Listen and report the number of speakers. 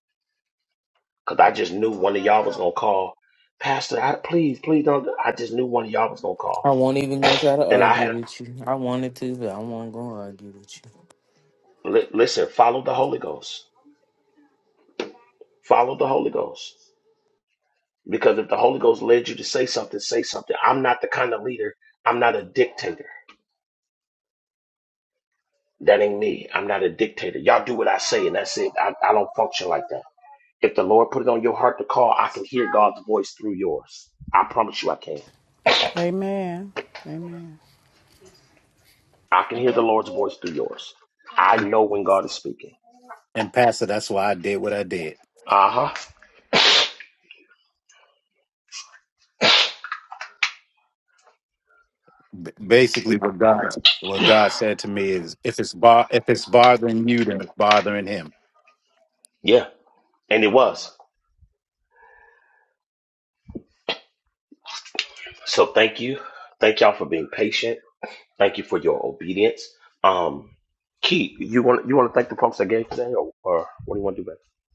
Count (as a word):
four